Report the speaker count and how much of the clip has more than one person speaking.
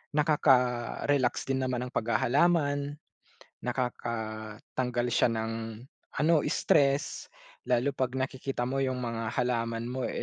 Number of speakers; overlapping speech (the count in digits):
1, no overlap